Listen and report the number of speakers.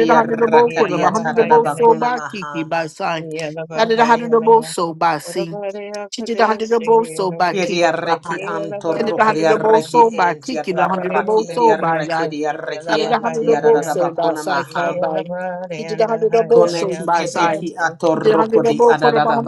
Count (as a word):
three